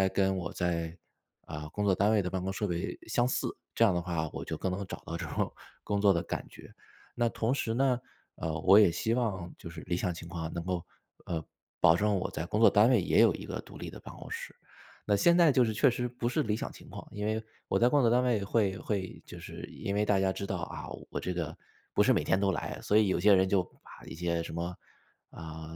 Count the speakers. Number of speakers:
1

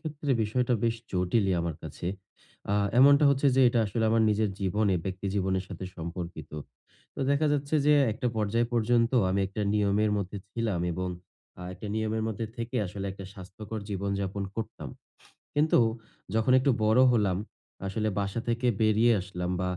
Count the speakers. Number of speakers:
1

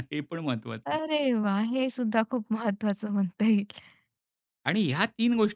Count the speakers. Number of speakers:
2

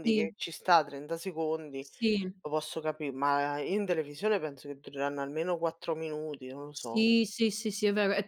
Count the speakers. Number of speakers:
2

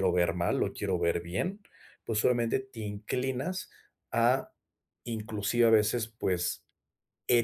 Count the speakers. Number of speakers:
1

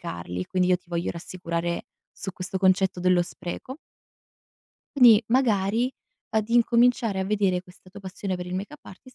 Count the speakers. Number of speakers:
1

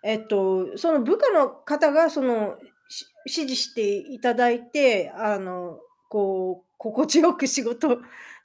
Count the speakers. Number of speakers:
1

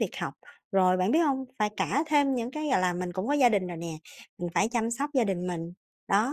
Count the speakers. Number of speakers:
1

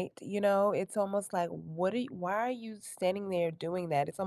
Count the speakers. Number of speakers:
1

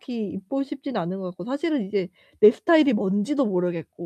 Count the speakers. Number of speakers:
1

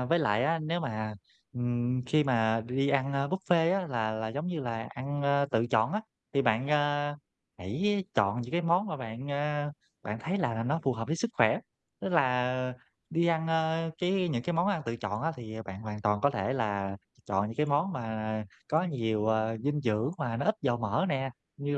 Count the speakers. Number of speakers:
1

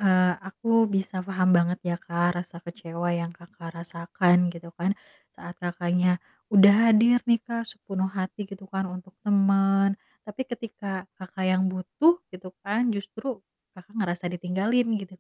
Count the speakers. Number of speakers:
1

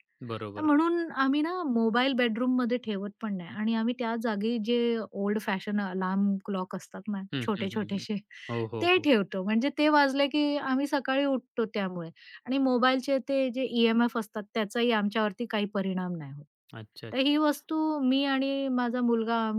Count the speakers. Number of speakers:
2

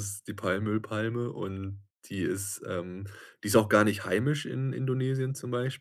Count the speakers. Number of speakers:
1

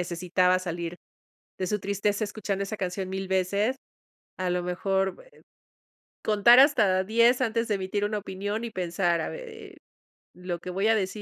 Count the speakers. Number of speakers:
1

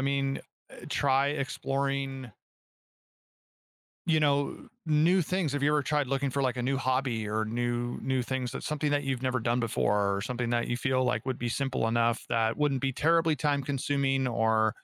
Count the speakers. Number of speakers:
1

